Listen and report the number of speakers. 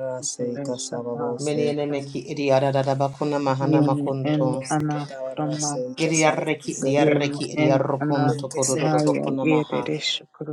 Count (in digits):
3